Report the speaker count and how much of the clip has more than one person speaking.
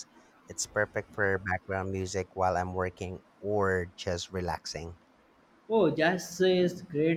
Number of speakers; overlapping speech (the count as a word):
two, no overlap